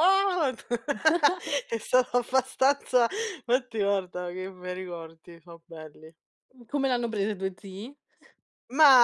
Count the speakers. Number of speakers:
2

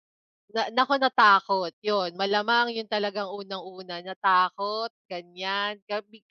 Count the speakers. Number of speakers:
1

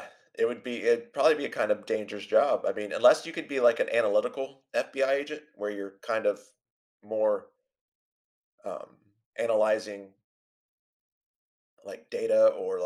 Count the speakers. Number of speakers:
1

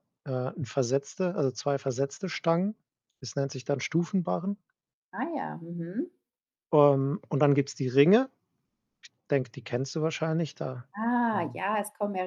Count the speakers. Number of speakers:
2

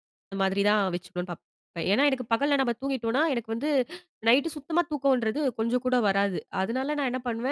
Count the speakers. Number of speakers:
1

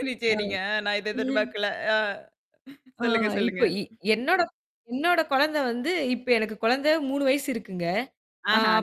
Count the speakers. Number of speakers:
2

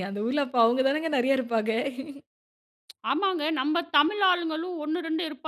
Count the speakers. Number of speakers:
2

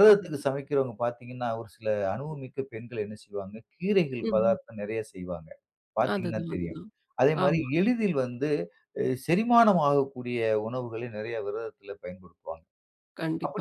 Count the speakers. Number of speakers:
2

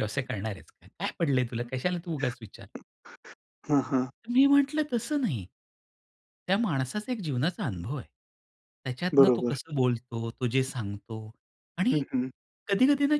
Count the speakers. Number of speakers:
2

